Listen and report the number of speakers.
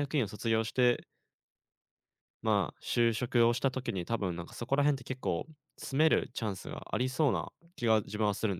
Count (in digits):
1